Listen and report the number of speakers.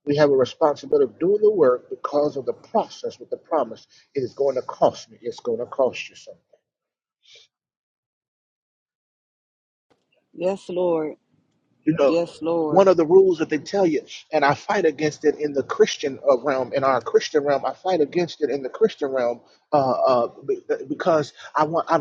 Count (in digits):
2